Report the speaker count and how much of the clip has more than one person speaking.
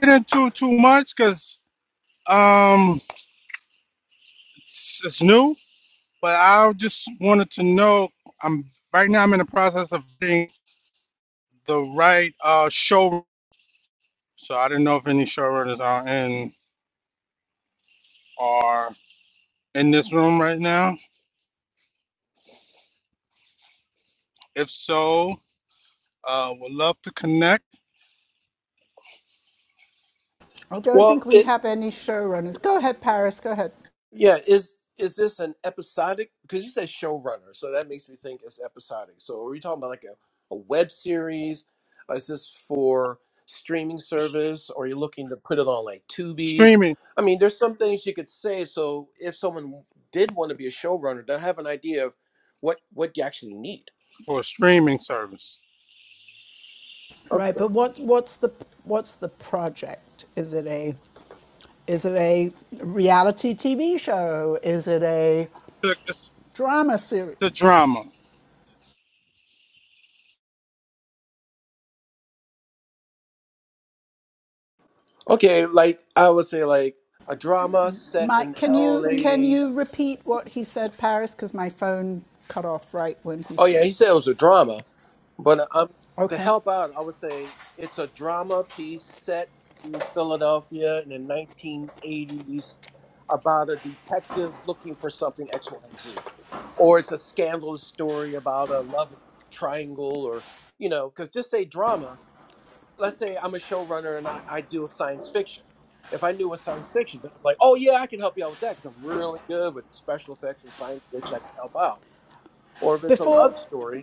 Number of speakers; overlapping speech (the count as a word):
three, about 3%